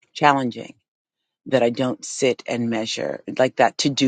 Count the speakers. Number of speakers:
1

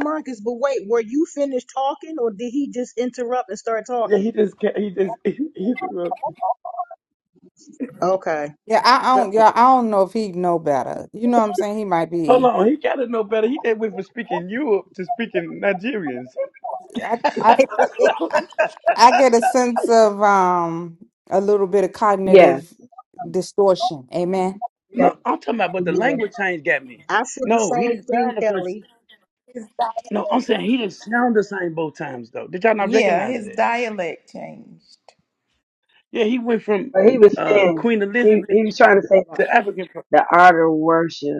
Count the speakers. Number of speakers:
5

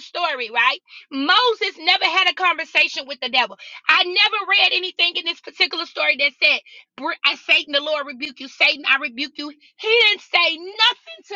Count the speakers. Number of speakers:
1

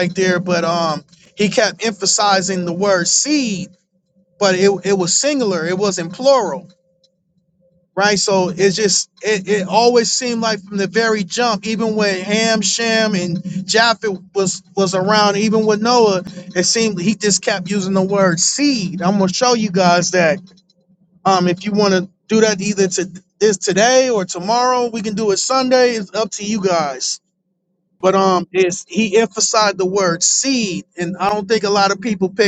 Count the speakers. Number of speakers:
1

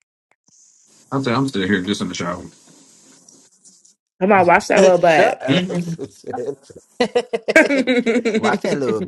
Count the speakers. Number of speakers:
3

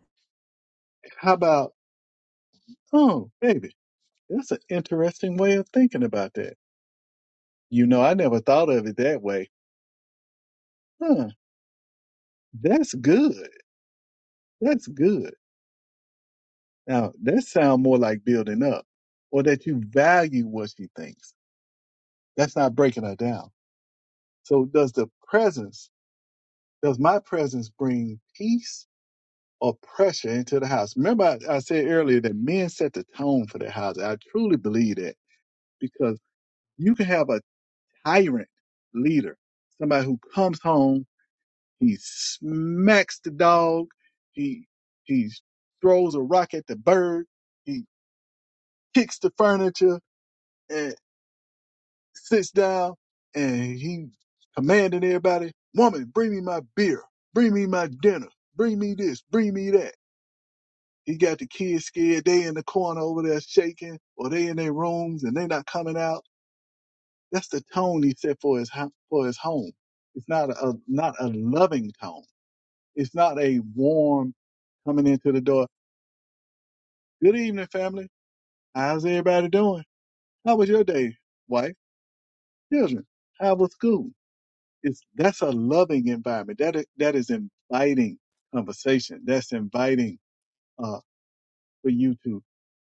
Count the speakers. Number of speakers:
1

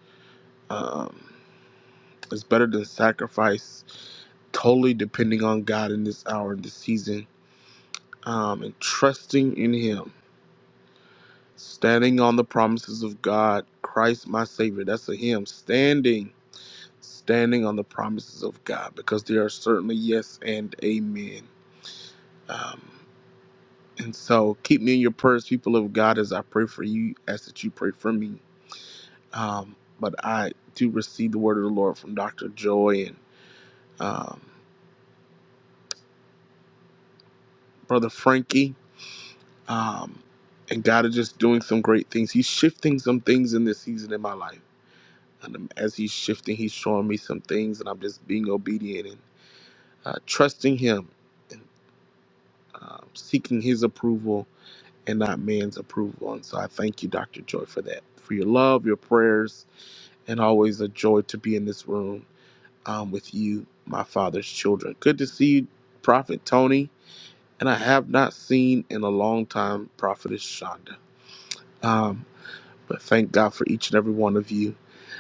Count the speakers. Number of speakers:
1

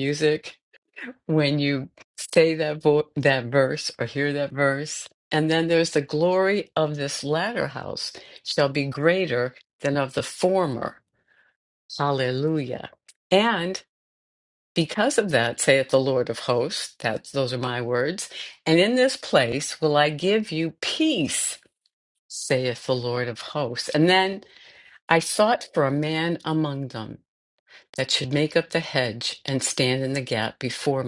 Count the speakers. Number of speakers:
1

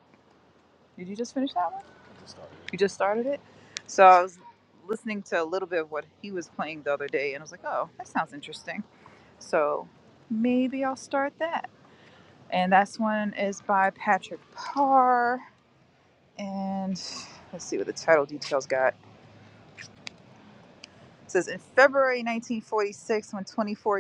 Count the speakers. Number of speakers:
1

